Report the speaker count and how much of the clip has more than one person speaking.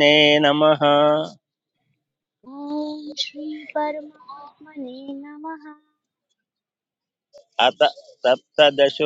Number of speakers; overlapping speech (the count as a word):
two, no overlap